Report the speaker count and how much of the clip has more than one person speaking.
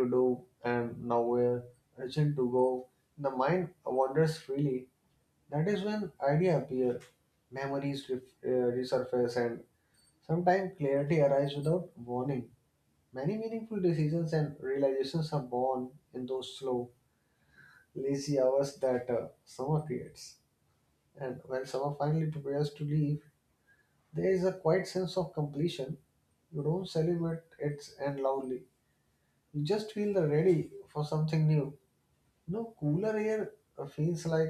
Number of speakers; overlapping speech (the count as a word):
one, no overlap